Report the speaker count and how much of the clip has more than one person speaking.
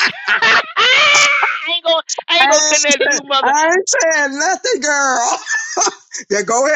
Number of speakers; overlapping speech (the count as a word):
two, about 17%